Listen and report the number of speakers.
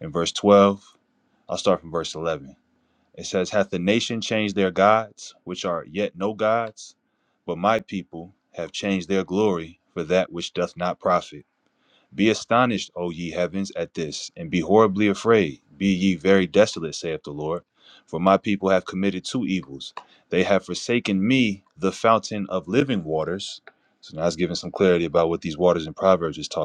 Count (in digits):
1